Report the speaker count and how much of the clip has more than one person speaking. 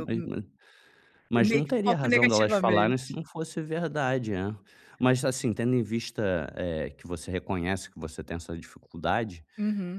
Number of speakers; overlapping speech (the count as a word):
two, about 20%